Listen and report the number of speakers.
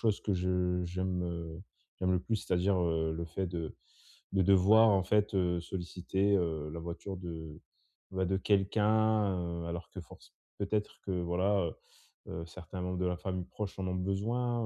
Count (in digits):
1